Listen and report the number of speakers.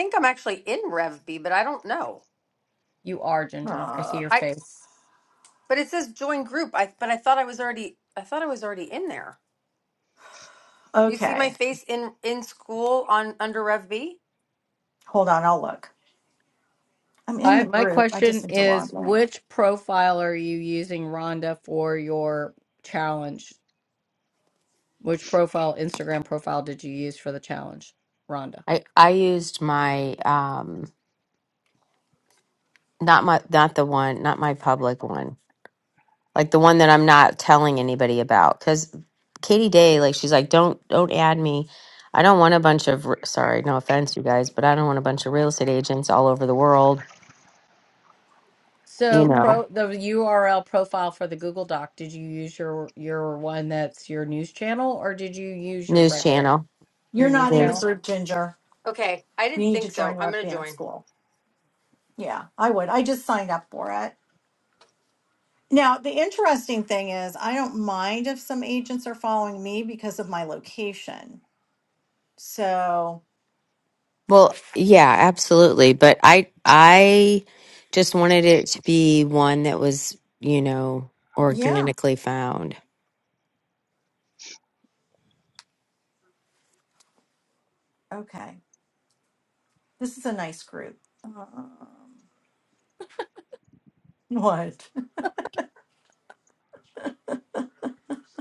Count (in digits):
4